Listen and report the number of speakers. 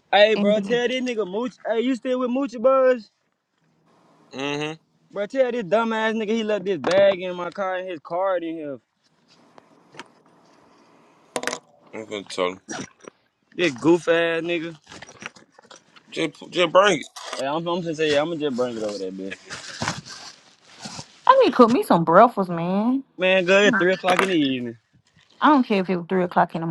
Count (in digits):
3